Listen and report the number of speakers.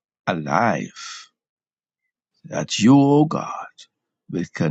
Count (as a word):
one